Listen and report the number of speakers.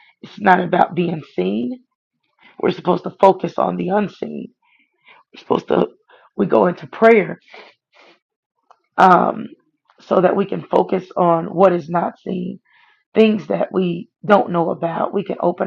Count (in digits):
1